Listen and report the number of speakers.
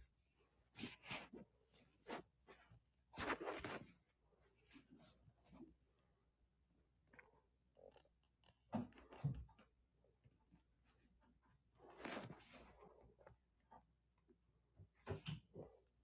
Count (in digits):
0